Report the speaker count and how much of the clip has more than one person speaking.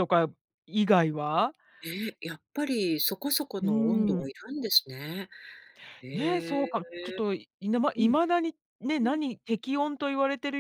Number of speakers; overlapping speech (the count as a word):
two, about 15%